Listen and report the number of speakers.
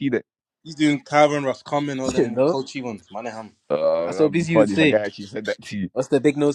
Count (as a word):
three